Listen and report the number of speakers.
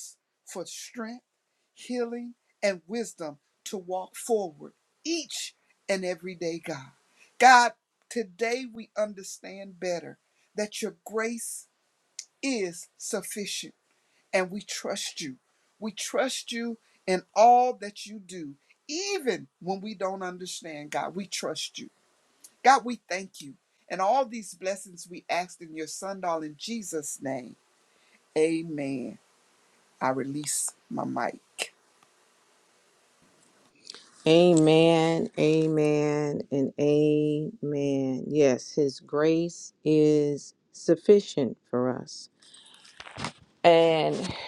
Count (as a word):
two